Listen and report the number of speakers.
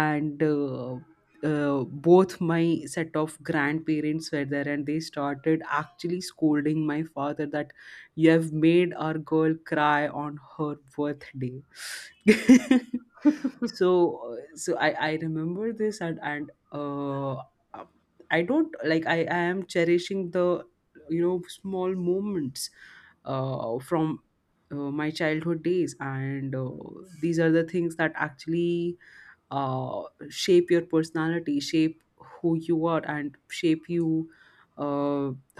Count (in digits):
1